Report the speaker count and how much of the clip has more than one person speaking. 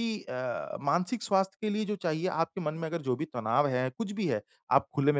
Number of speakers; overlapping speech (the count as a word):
one, no overlap